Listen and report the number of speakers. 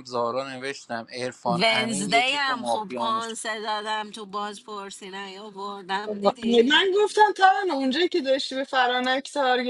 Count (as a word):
three